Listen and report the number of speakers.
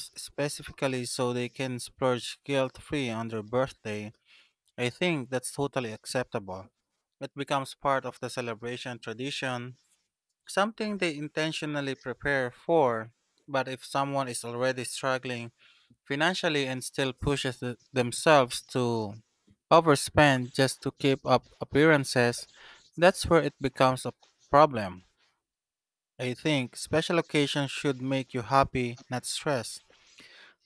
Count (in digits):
1